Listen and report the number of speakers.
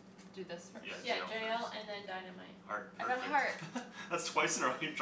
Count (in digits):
3